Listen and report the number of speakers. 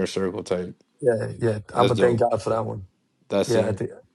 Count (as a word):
two